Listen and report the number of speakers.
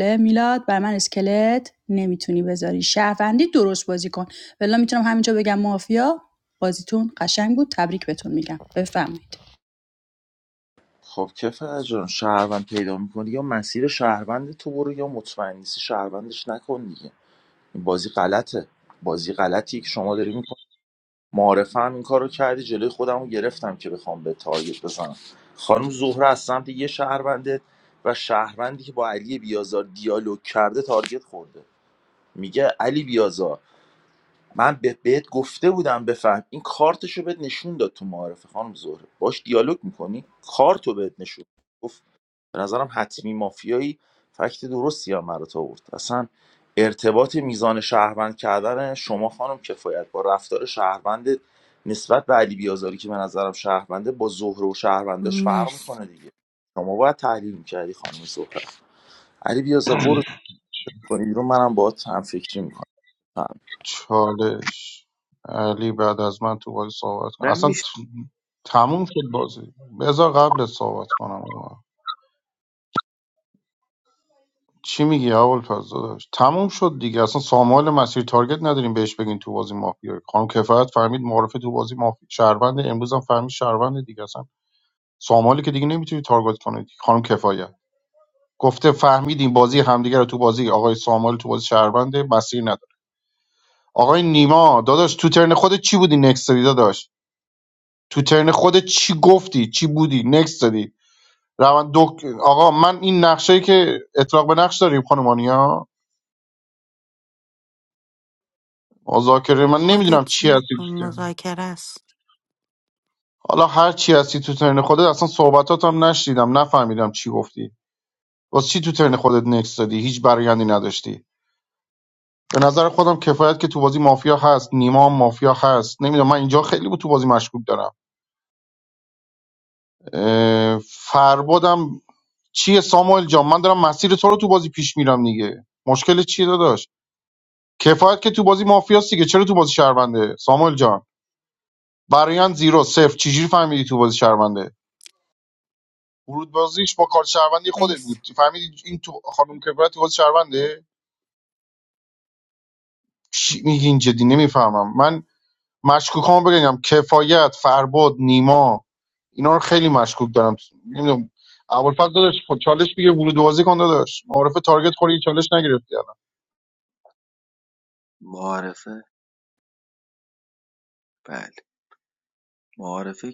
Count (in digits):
5